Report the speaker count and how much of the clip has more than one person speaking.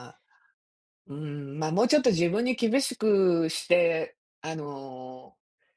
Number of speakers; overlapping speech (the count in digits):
1, no overlap